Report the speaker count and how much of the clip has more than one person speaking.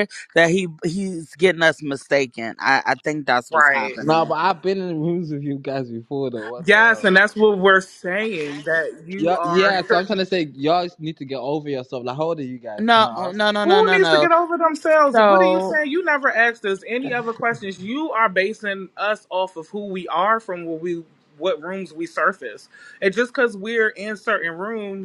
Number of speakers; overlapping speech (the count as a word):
three, about 15%